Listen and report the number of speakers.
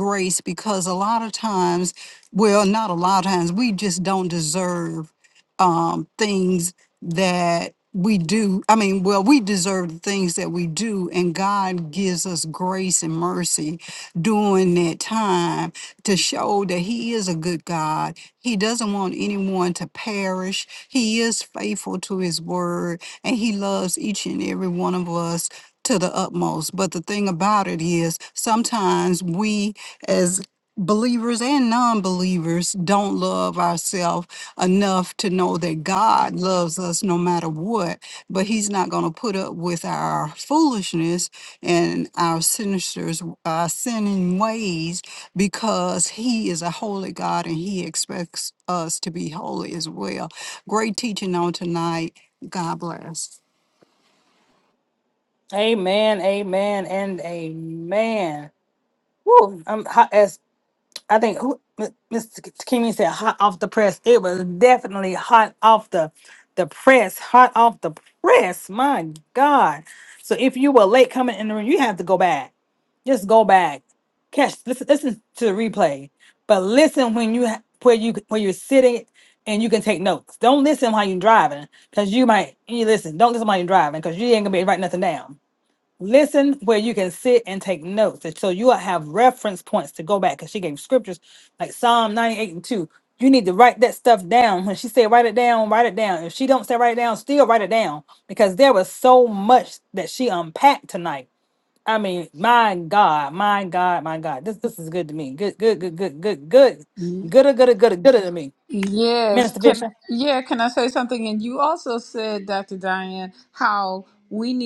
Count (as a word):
three